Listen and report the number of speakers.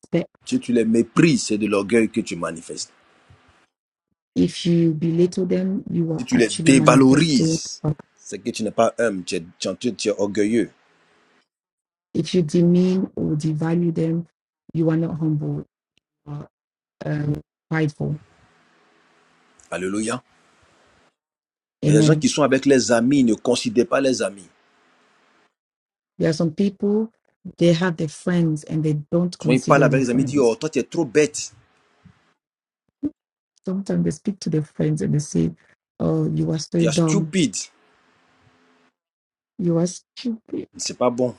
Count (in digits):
2